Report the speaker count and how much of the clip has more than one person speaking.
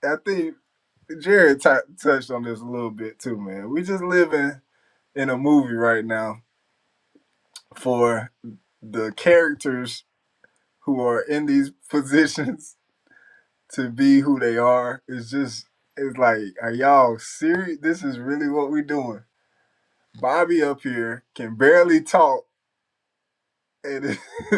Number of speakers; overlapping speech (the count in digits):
1, no overlap